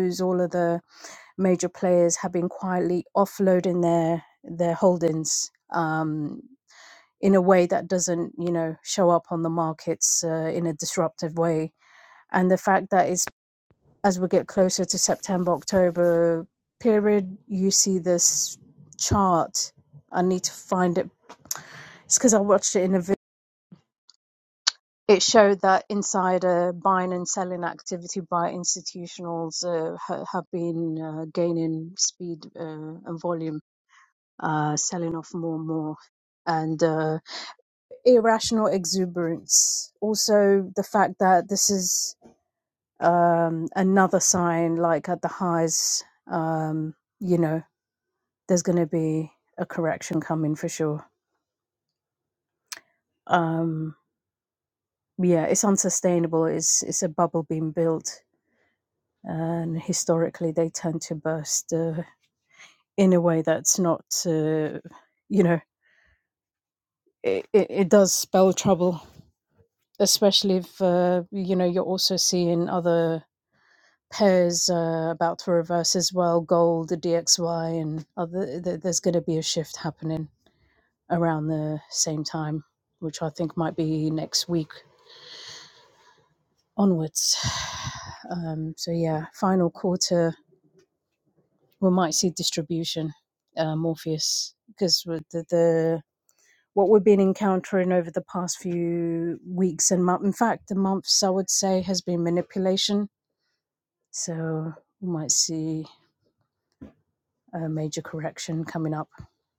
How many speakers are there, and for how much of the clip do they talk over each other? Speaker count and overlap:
one, no overlap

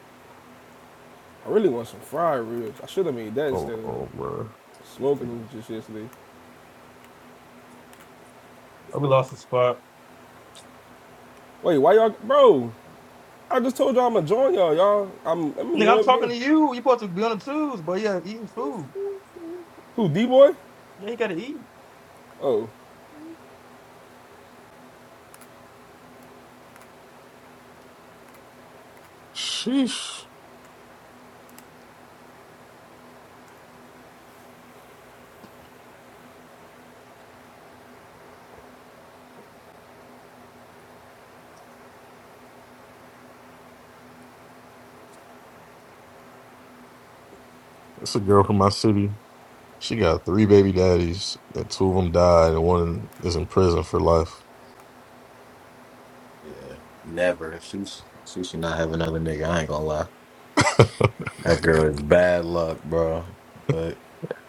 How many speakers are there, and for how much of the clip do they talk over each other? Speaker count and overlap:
four, about 2%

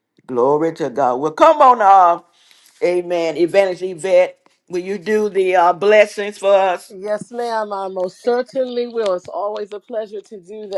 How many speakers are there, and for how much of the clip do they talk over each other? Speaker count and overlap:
two, no overlap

